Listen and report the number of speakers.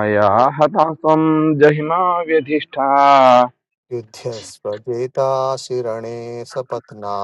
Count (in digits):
2